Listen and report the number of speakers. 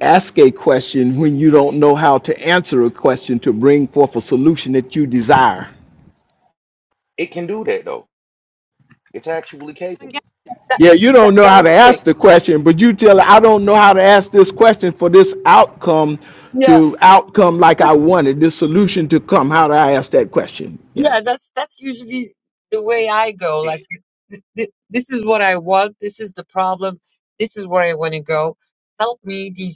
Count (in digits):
3